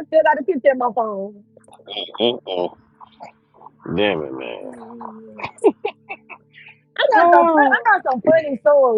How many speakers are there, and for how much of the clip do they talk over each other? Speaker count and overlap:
two, about 8%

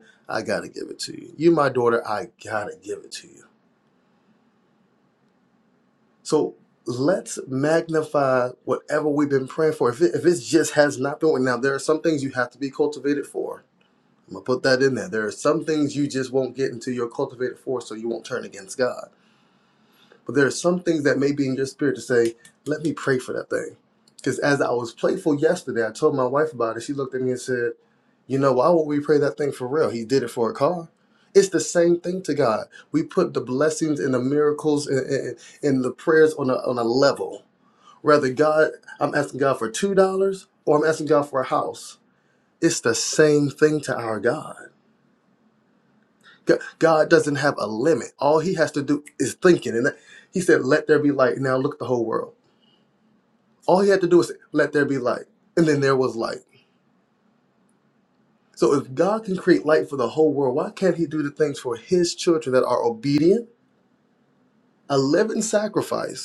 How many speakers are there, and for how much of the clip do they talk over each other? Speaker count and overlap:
one, no overlap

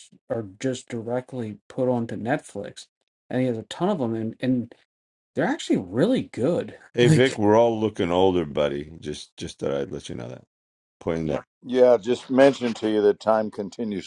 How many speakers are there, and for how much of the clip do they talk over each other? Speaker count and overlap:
three, about 3%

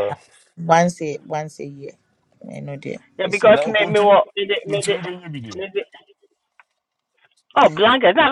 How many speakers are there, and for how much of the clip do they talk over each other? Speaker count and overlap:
three, about 18%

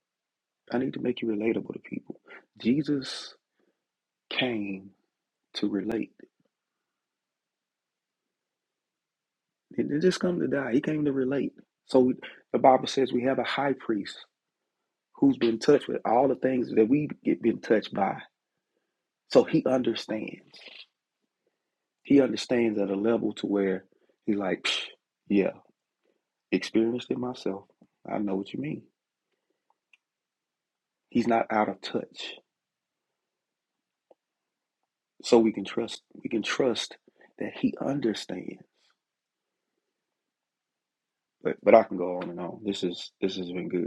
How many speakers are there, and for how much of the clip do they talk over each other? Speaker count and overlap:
one, no overlap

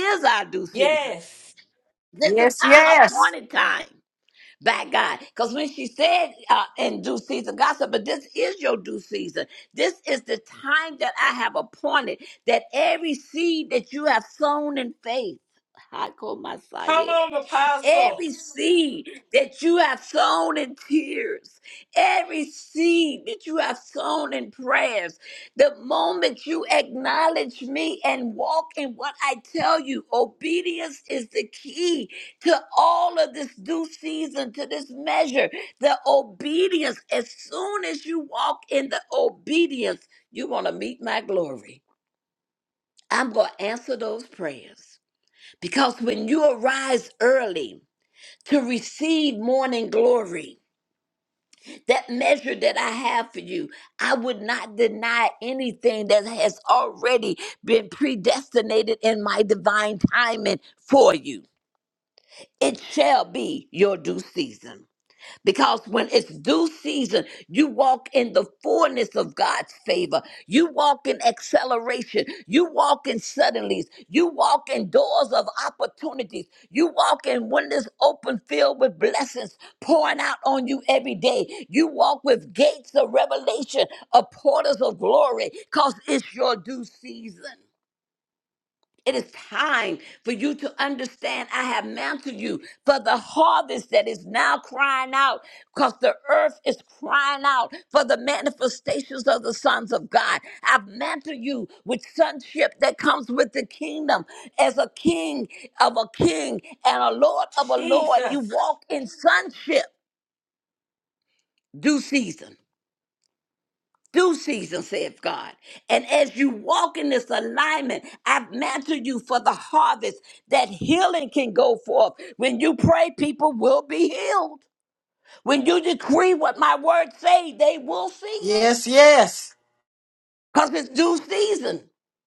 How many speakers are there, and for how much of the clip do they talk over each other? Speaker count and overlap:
three, about 2%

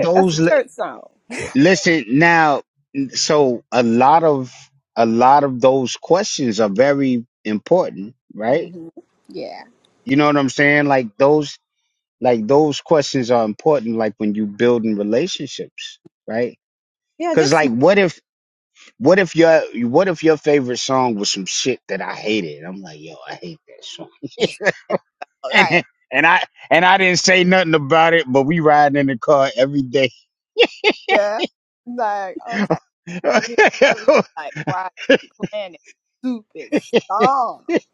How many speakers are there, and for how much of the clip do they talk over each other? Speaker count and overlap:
two, about 4%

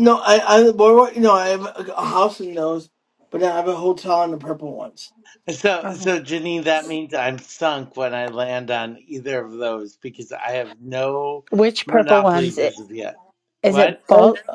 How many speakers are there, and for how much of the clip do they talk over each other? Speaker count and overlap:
three, about 9%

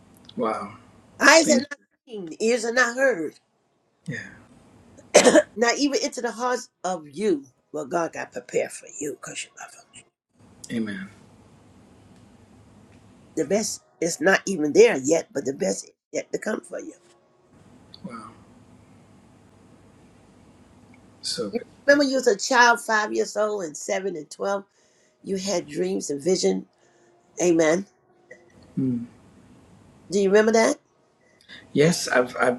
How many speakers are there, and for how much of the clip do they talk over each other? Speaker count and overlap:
two, about 2%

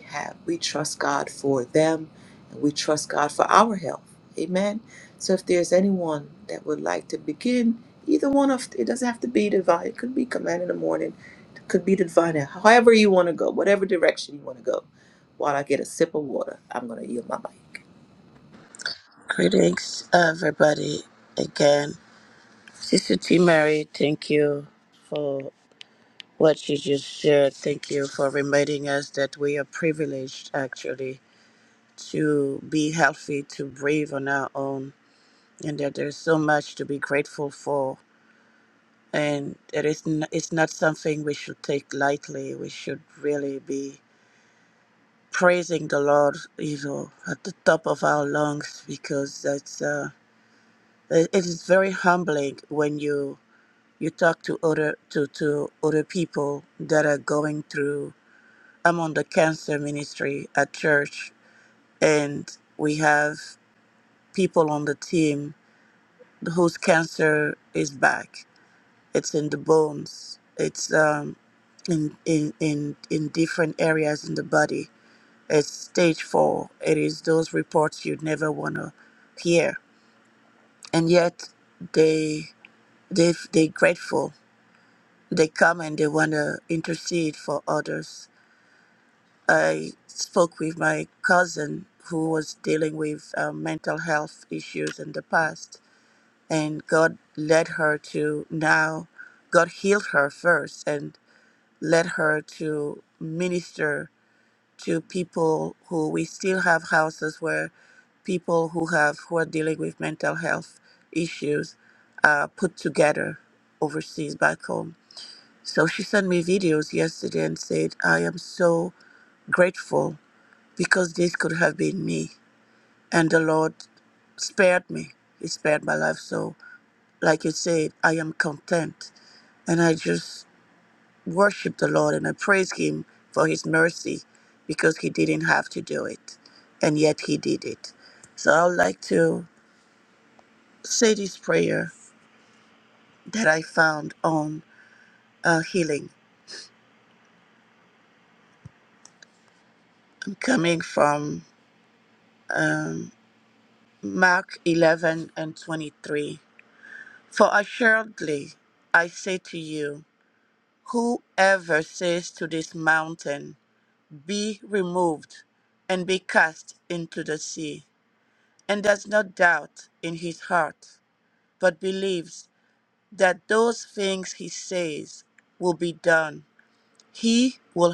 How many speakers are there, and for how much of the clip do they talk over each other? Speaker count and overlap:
two, no overlap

